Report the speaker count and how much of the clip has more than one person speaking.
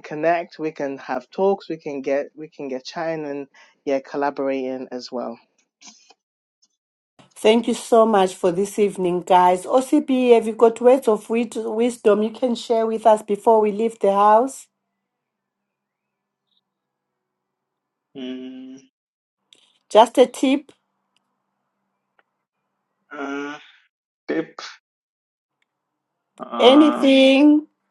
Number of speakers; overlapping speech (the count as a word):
three, about 2%